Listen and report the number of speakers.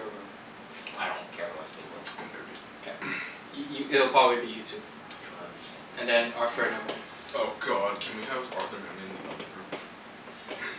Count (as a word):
three